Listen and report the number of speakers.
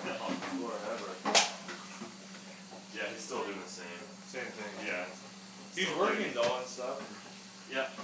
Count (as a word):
two